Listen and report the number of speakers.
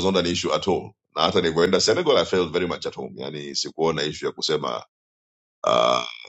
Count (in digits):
1